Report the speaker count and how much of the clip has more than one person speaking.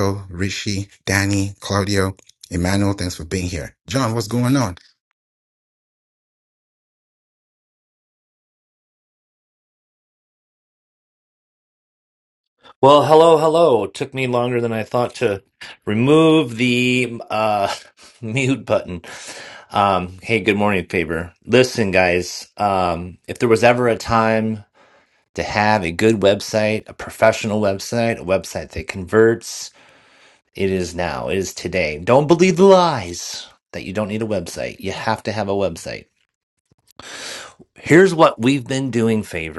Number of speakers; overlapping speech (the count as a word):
two, no overlap